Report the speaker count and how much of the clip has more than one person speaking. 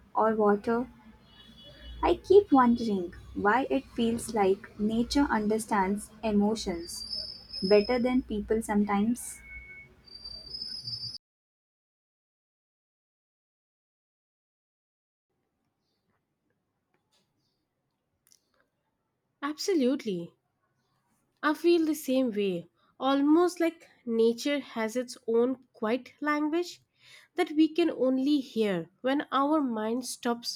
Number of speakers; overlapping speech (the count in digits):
2, no overlap